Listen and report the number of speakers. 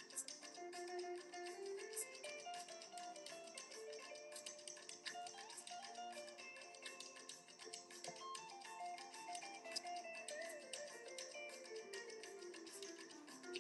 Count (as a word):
zero